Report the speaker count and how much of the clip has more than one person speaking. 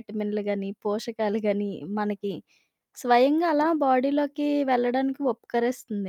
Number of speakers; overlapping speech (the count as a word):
one, no overlap